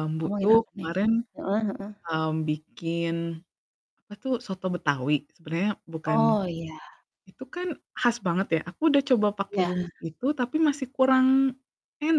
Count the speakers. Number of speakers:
2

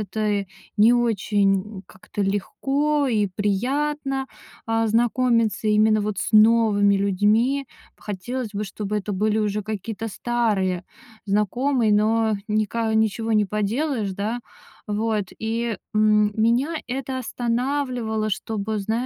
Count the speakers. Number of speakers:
1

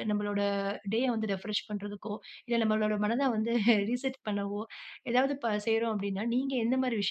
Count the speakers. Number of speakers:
1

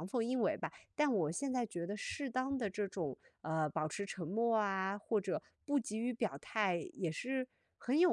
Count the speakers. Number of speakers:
1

